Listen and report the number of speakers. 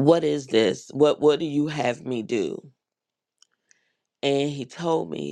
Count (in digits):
1